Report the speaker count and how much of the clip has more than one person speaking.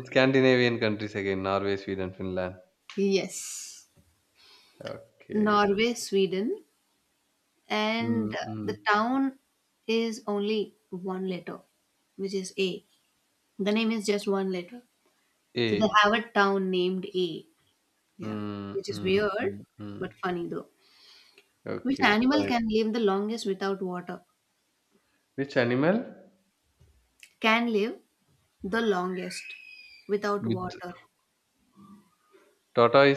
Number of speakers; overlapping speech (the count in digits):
2, about 10%